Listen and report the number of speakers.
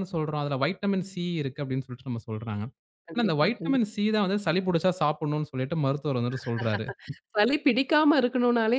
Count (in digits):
2